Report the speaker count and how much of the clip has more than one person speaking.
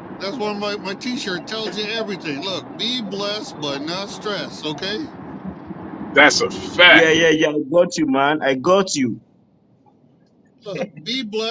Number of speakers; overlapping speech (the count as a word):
three, about 3%